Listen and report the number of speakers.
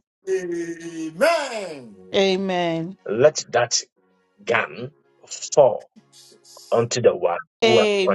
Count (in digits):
3